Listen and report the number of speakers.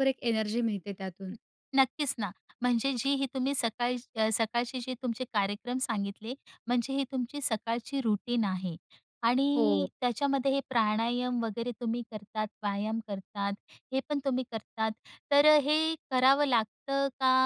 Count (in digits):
2